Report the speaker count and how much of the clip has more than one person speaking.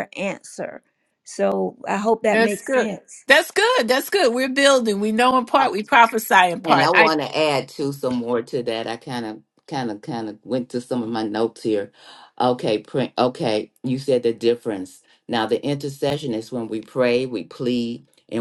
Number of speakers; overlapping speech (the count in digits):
3, about 6%